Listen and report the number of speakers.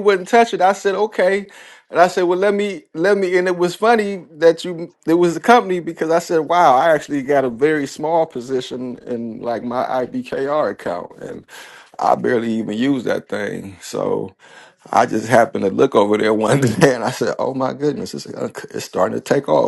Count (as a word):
one